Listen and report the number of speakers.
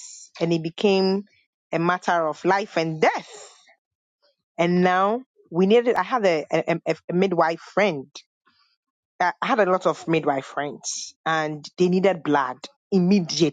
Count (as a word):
one